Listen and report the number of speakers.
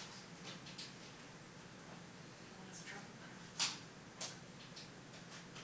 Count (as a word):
zero